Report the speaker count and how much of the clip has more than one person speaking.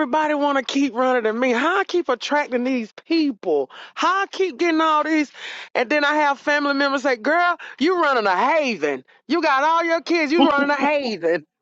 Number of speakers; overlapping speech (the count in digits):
1, no overlap